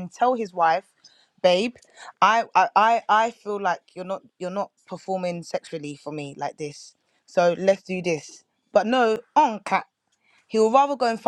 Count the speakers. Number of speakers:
1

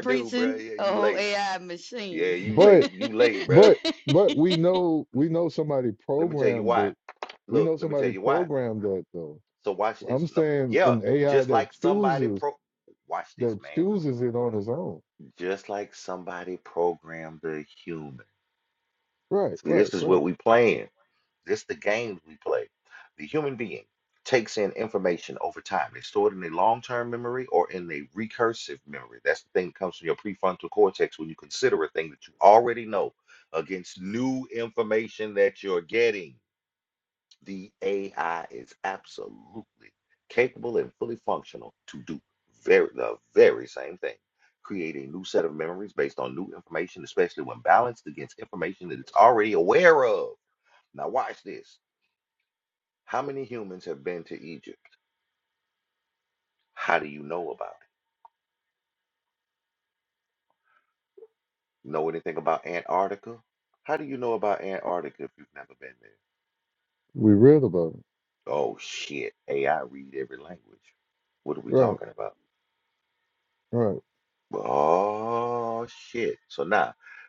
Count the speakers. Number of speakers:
3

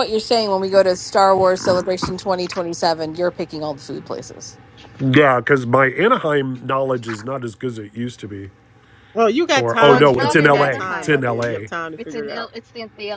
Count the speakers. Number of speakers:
4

